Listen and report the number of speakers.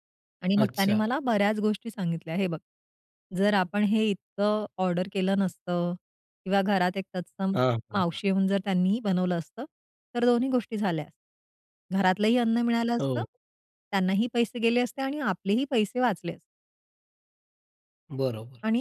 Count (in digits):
2